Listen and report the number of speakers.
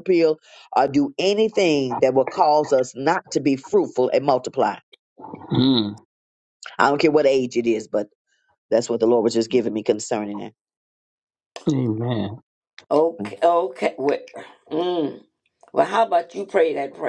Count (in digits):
3